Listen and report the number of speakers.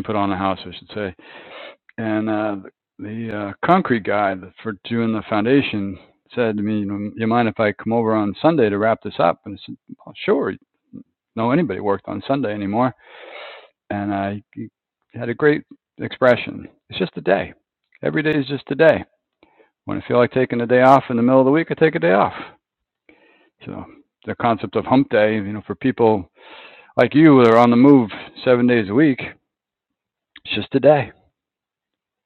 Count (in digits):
1